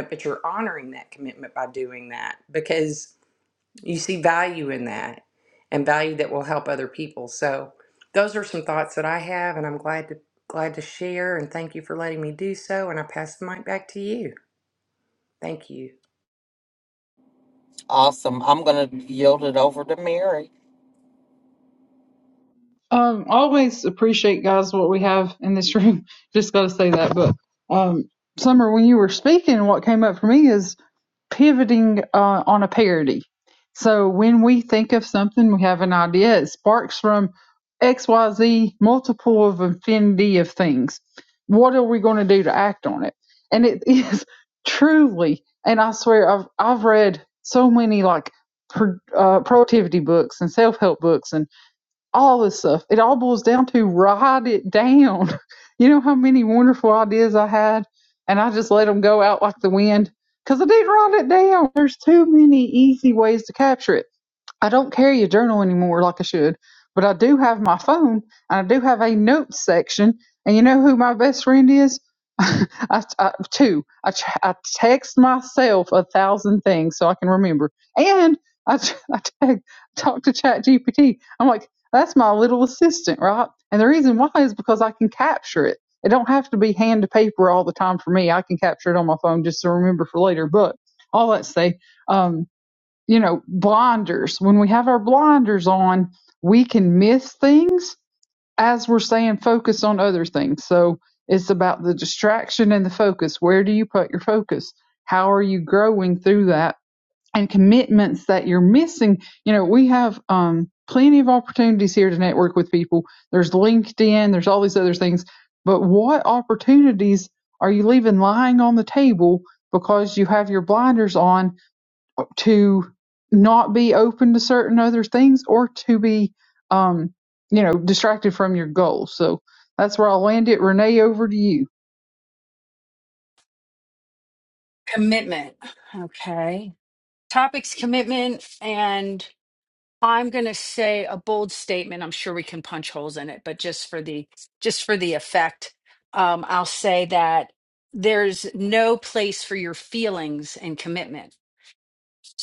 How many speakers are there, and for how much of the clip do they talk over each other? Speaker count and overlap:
four, no overlap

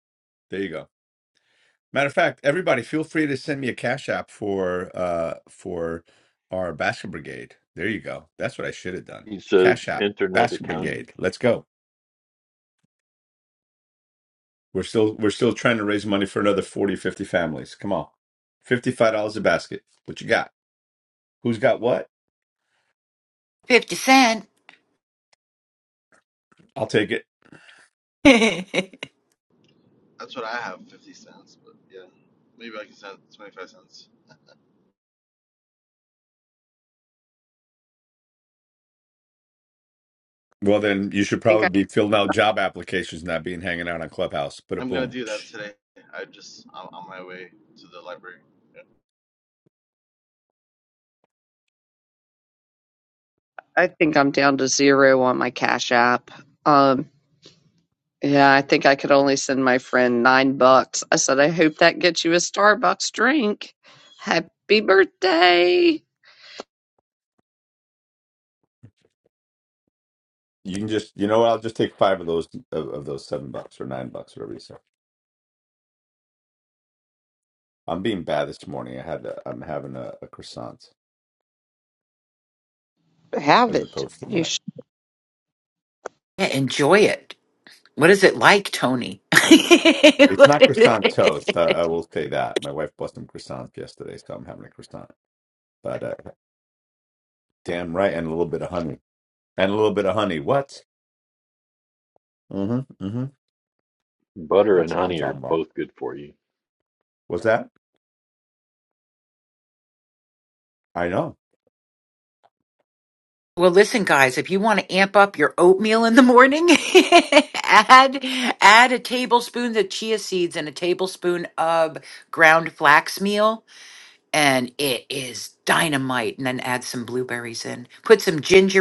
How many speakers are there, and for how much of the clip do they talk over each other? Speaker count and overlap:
five, about 4%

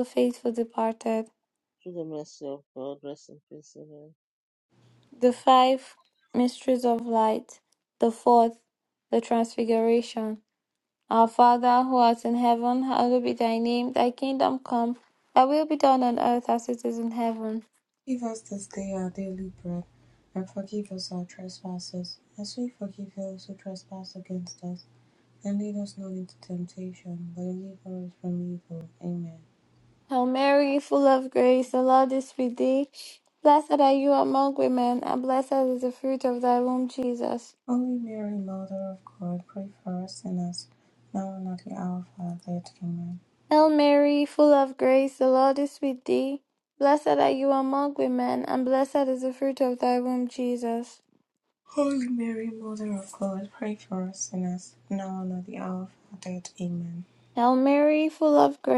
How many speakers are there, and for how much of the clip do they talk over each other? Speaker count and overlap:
three, no overlap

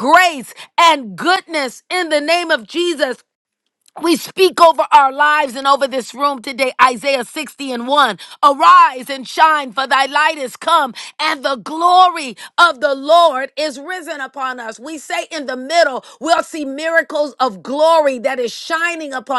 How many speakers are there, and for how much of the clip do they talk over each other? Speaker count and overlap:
one, no overlap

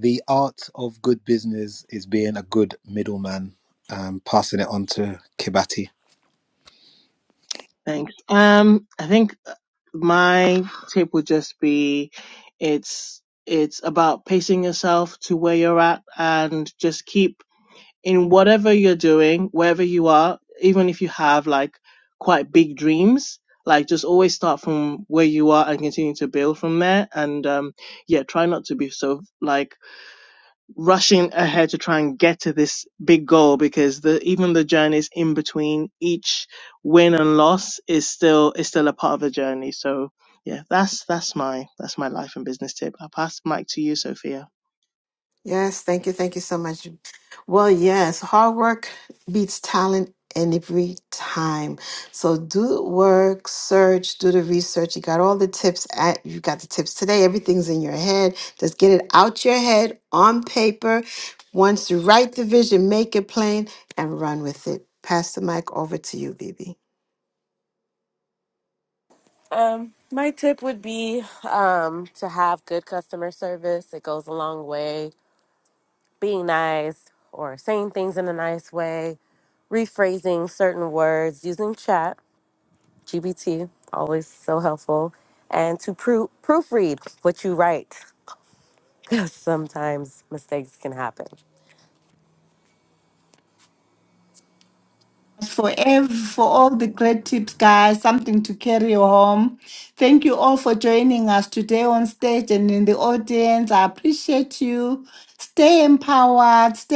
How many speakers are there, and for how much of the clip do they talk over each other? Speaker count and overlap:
five, no overlap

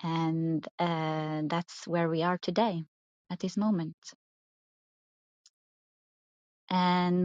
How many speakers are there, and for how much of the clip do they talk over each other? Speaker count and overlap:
one, no overlap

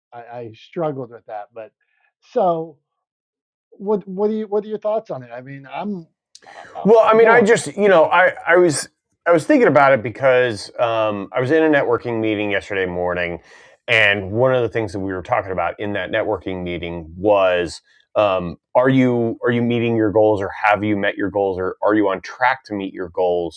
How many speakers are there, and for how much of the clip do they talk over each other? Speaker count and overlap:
two, about 3%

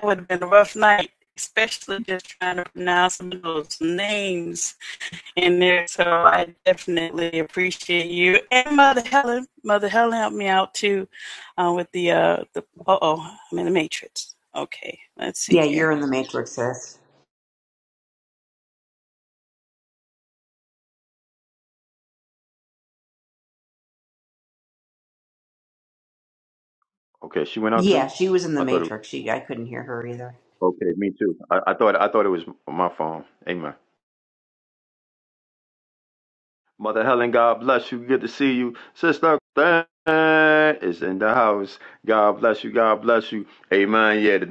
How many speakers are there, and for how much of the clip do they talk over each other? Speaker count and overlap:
three, about 2%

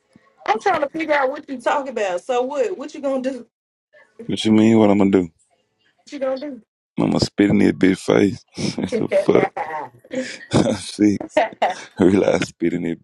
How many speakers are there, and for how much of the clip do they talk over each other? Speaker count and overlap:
two, no overlap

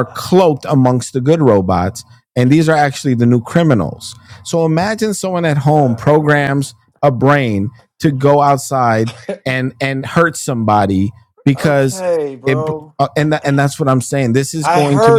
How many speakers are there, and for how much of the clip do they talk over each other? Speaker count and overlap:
two, about 13%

